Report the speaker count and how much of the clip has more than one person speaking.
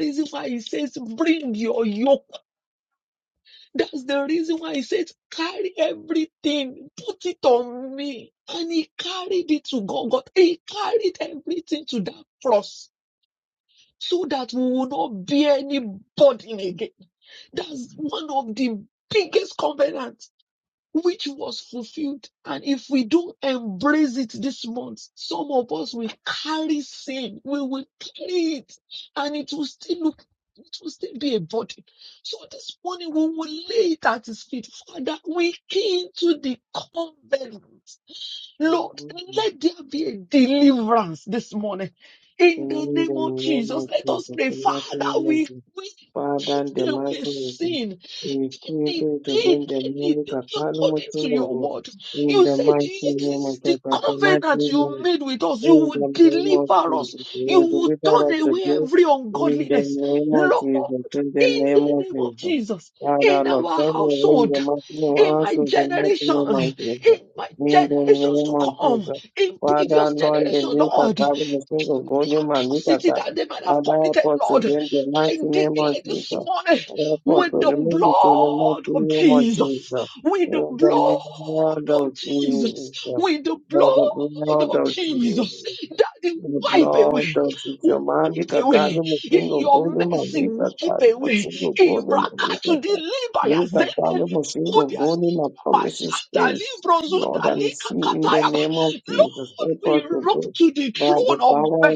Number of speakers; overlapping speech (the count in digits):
2, about 41%